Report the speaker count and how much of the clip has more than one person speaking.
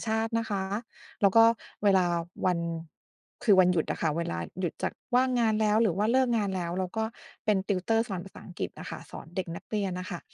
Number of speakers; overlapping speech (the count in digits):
1, no overlap